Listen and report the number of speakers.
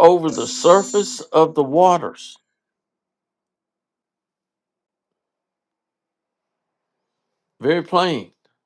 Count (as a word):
one